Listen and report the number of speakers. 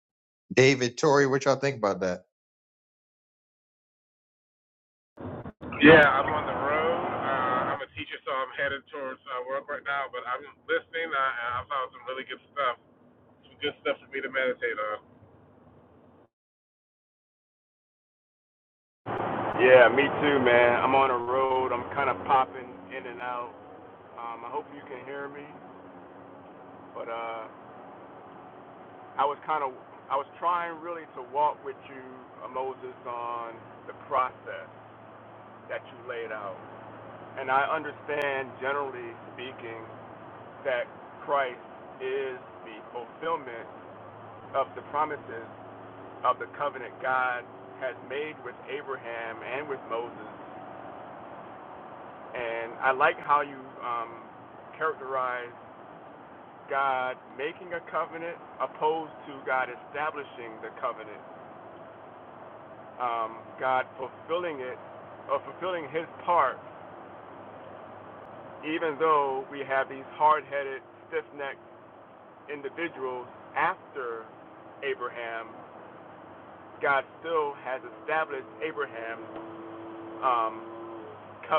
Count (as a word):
three